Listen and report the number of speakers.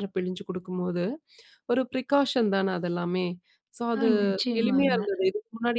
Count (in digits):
2